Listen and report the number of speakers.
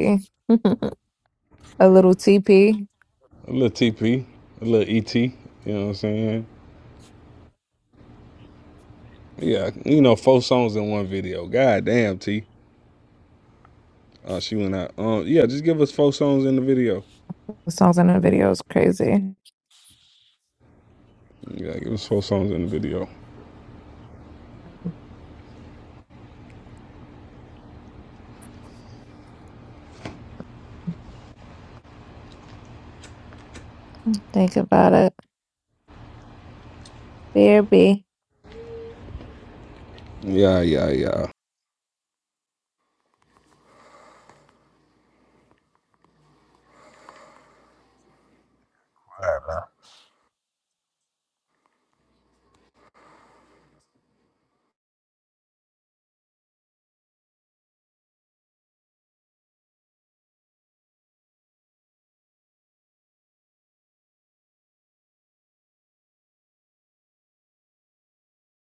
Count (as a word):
two